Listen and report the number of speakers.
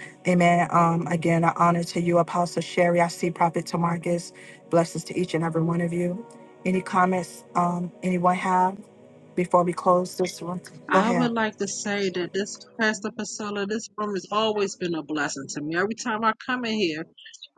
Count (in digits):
2